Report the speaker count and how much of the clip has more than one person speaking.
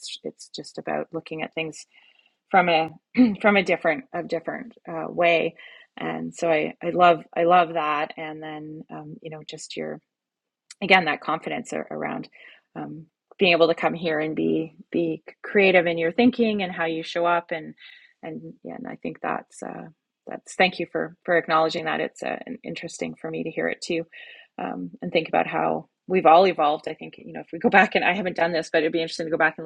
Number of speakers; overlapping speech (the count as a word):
one, no overlap